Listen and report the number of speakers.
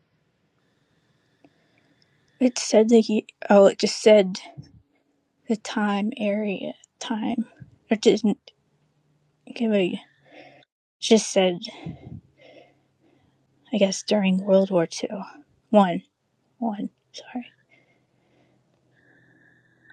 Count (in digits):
1